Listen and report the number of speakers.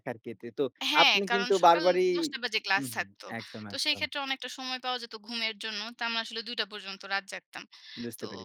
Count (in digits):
2